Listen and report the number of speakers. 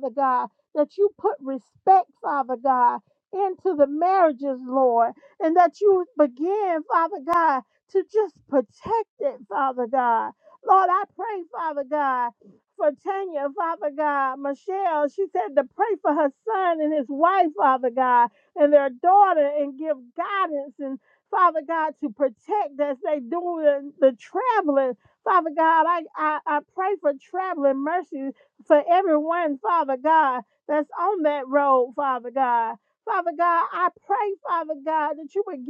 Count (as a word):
one